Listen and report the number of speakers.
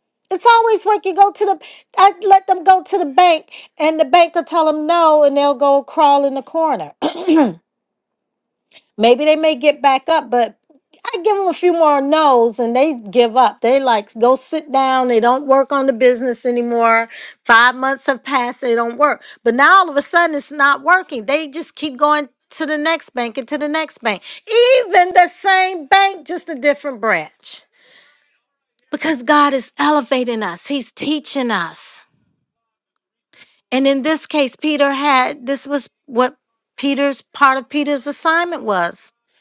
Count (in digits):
1